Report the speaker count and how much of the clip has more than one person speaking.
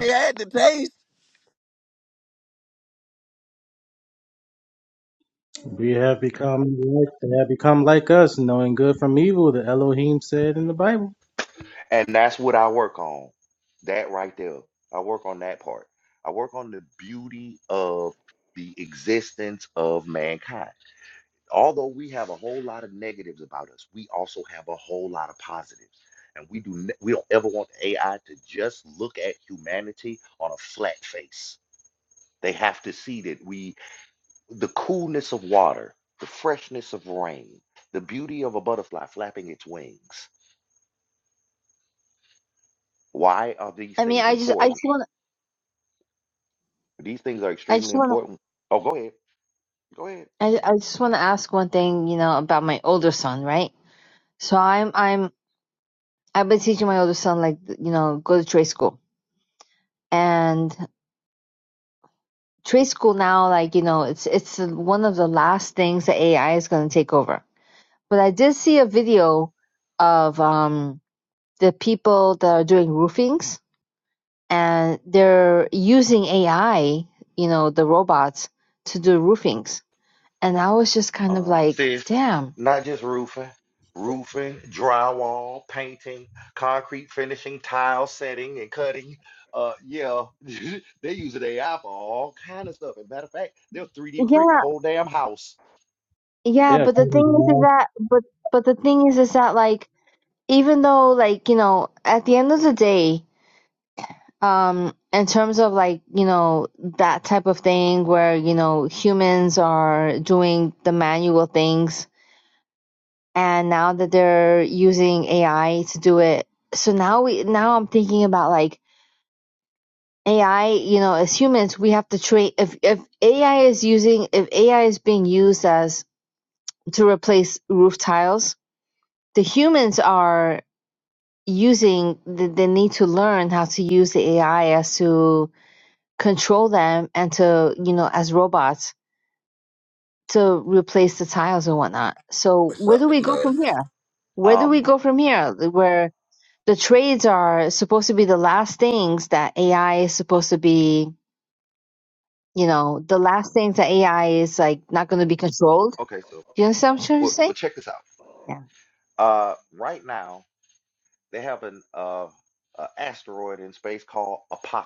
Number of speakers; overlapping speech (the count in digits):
4, about 3%